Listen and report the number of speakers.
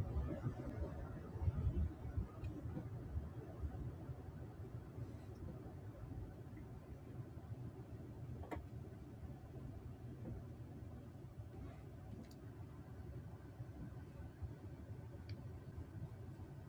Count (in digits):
0